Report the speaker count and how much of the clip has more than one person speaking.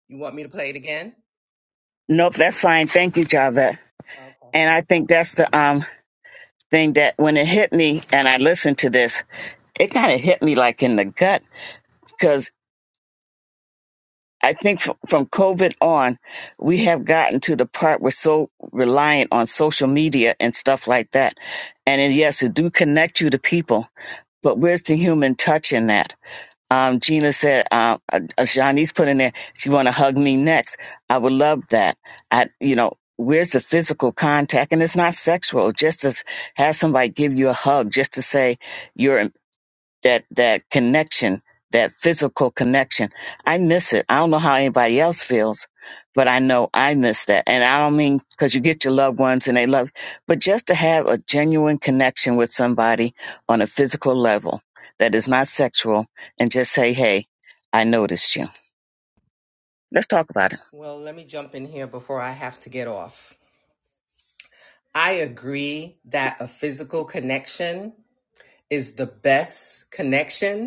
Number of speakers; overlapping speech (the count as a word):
two, no overlap